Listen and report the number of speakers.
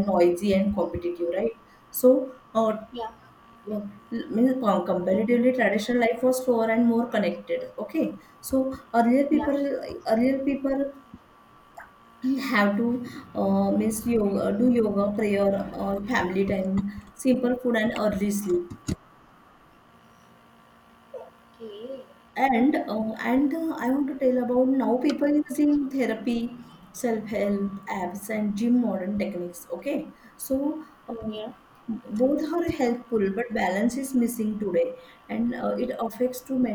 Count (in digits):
2